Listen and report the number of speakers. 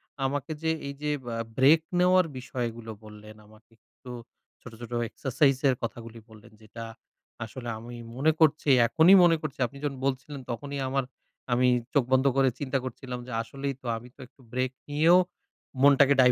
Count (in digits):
1